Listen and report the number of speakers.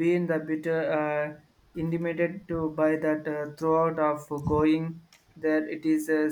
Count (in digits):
1